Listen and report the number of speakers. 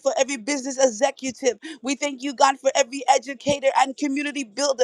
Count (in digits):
1